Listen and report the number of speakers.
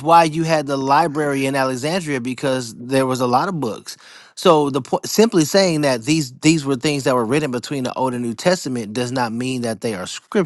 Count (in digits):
1